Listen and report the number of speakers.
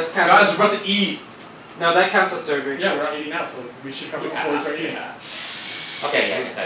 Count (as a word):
four